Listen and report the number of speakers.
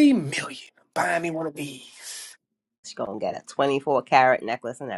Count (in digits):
2